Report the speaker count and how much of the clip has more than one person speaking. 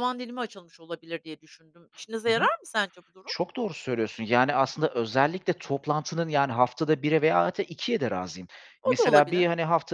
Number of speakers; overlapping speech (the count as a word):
two, about 9%